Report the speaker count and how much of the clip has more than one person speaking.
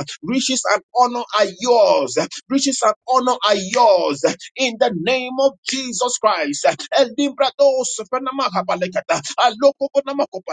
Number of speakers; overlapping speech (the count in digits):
1, no overlap